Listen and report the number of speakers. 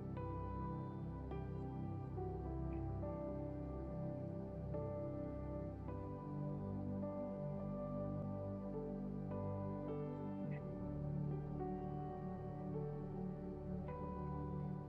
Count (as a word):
zero